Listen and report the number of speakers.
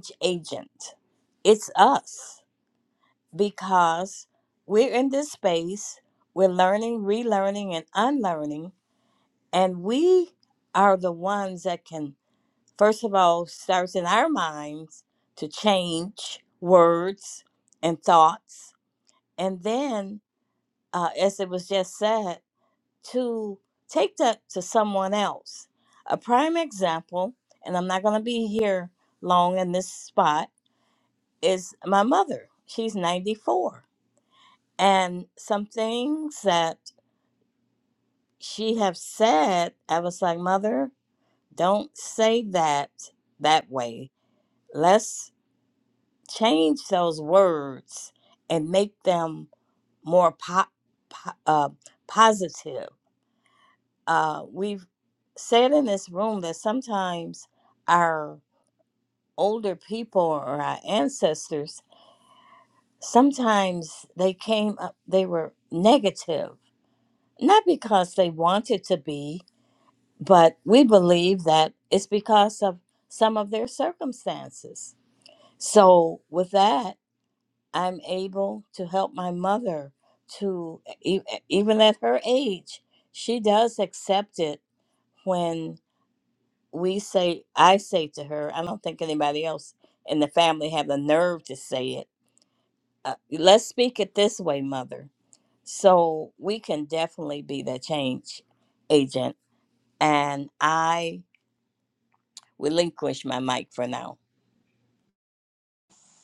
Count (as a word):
one